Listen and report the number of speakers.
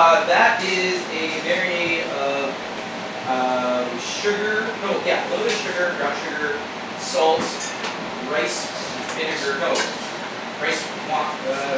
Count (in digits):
1